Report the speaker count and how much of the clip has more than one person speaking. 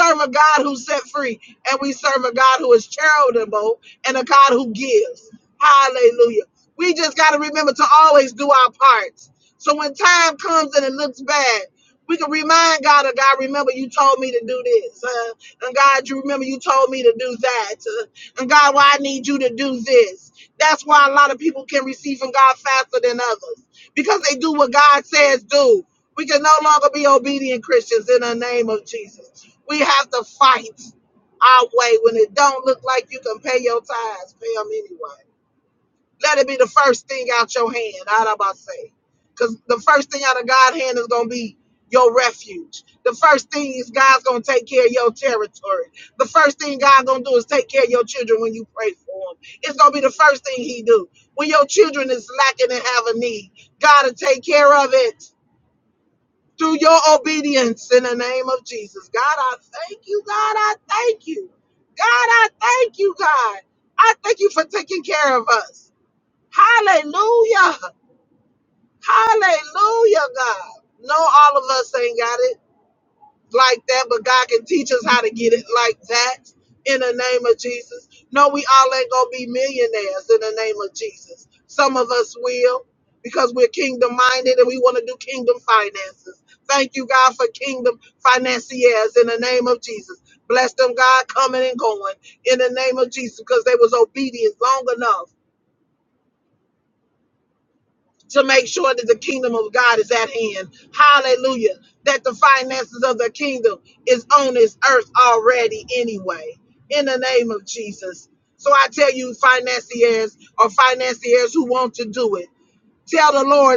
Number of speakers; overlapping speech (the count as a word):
one, no overlap